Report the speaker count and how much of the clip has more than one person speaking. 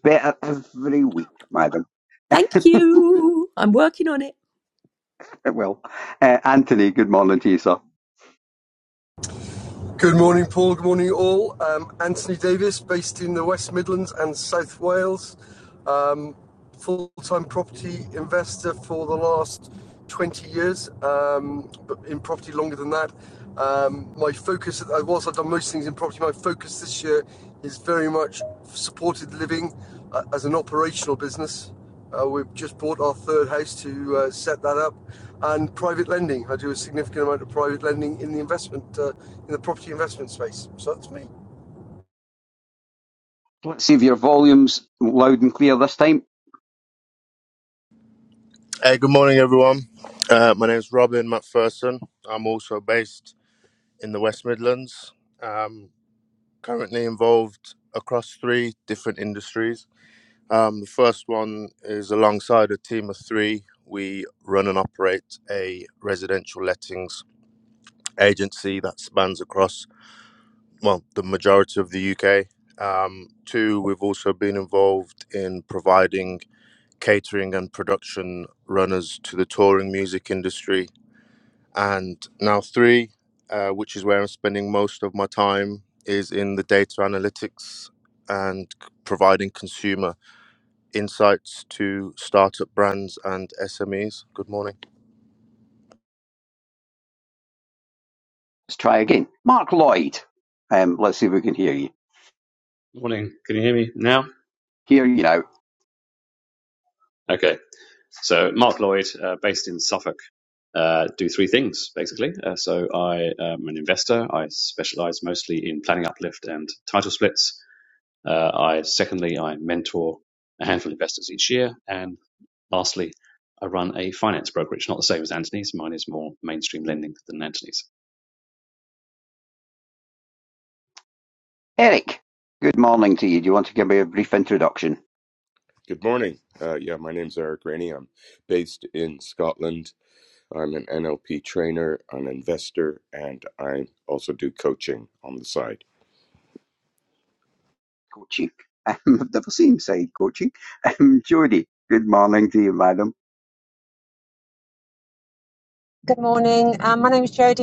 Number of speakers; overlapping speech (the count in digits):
7, no overlap